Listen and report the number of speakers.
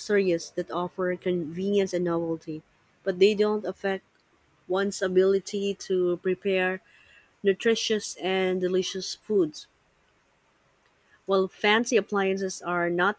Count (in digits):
1